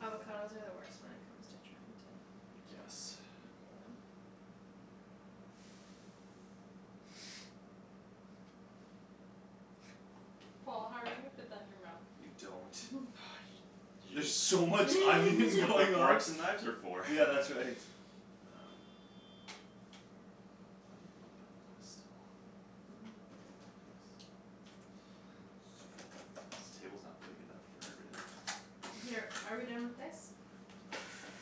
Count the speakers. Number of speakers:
four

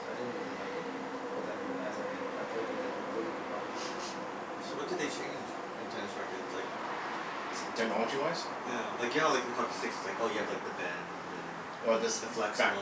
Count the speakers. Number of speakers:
three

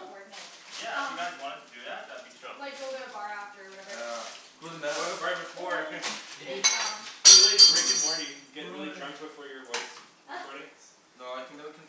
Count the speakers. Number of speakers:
four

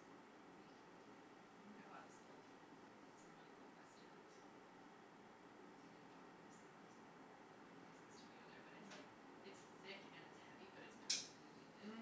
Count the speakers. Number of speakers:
one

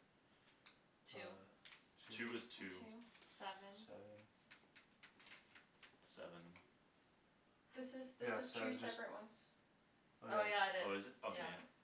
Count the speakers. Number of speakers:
four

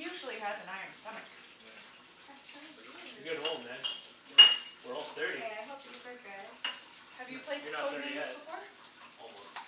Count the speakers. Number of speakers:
four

